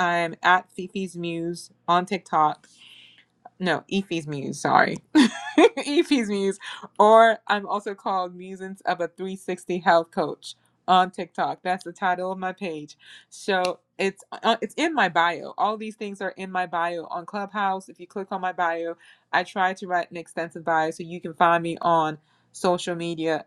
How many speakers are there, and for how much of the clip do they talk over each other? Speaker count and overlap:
one, no overlap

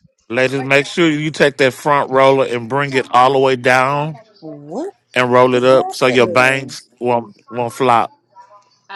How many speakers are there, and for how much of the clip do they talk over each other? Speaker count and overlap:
two, about 13%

